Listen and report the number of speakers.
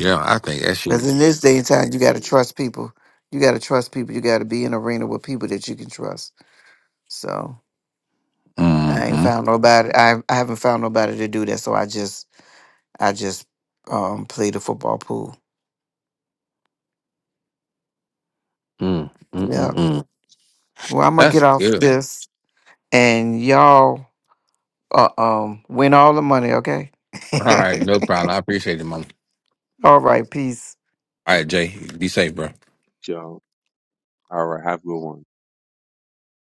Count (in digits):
3